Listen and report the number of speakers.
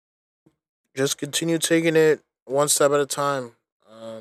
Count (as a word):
one